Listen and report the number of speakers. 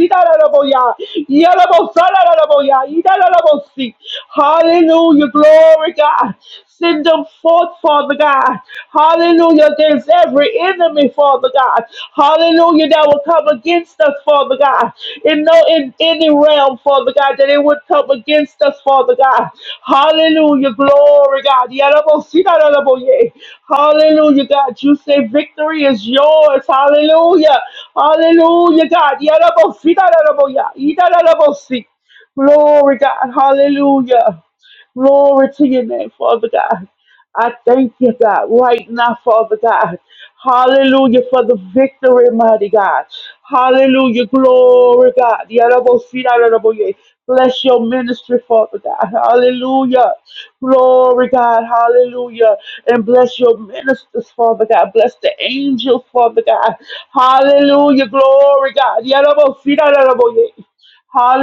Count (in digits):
1